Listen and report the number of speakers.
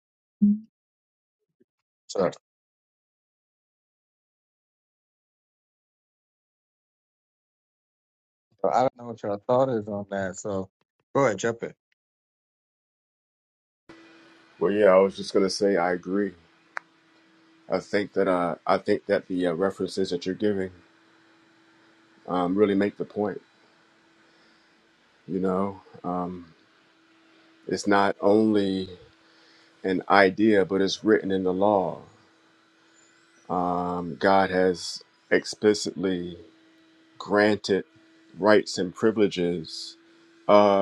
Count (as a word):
two